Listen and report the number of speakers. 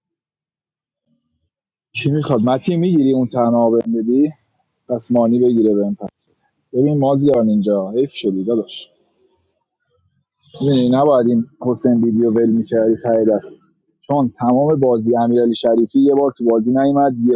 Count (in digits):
1